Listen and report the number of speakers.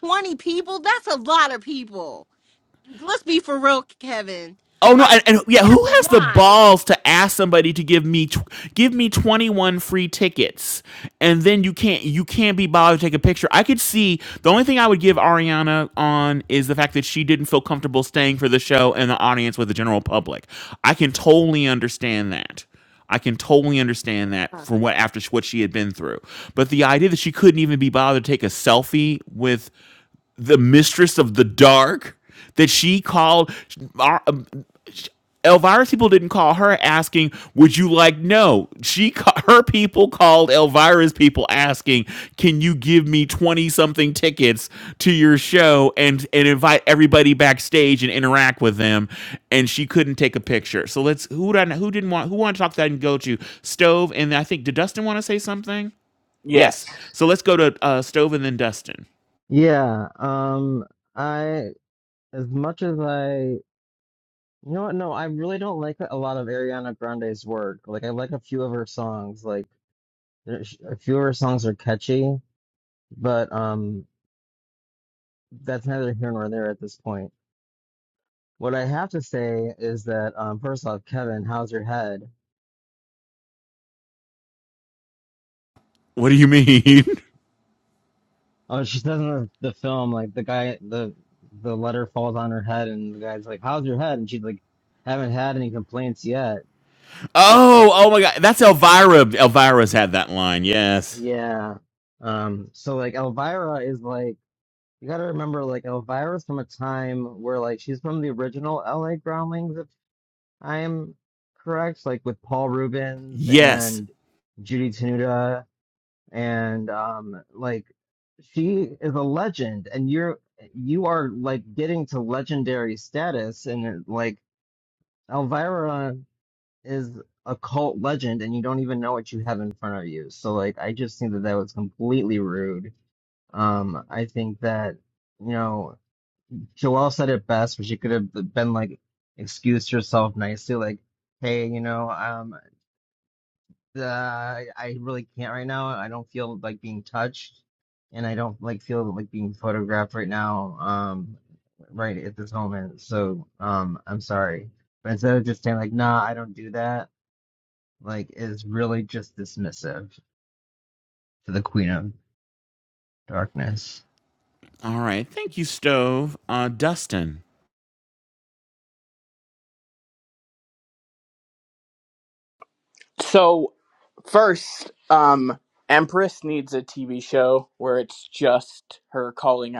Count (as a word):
four